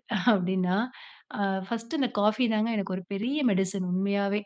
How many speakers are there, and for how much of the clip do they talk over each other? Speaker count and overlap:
1, no overlap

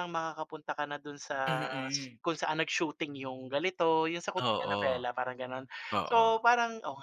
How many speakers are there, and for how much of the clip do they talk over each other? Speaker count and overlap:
2, about 16%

